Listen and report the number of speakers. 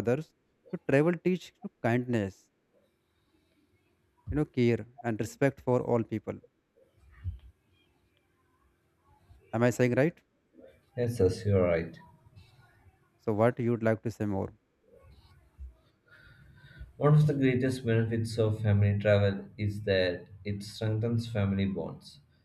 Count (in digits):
2